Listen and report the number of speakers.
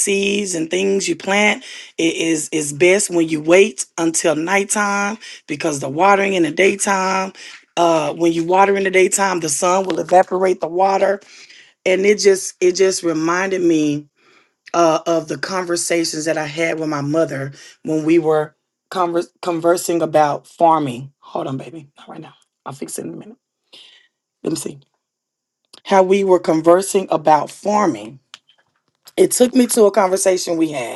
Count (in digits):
1